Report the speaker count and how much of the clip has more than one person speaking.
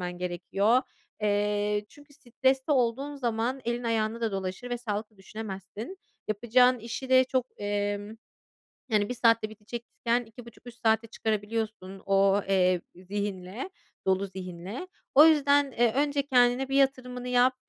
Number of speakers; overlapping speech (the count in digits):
1, no overlap